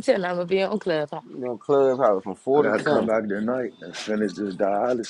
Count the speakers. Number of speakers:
3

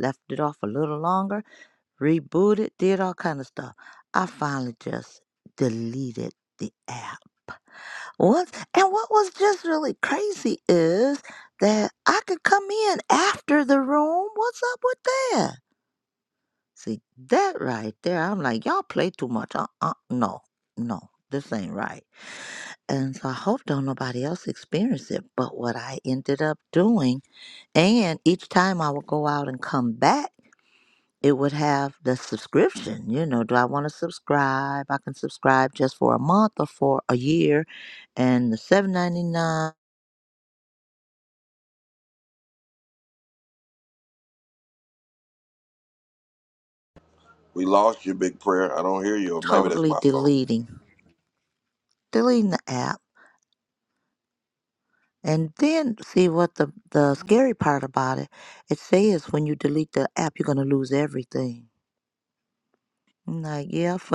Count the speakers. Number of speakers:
2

